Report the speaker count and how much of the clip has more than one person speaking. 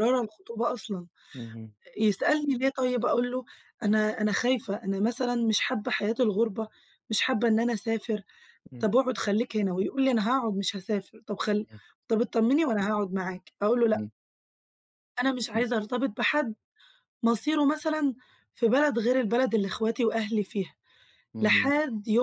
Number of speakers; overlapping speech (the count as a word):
two, about 2%